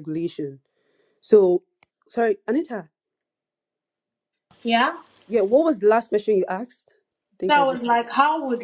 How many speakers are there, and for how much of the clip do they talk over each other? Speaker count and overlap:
two, about 4%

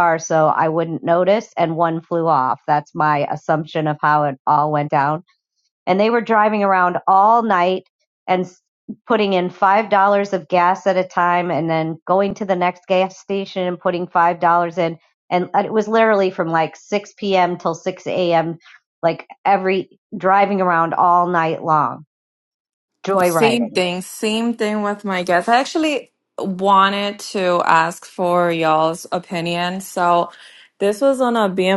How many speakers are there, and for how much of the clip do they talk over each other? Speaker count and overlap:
two, about 2%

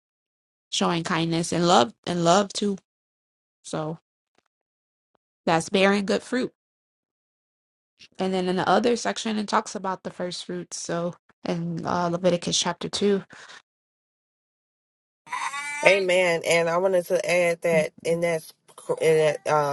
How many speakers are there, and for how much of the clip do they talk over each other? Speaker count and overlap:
two, no overlap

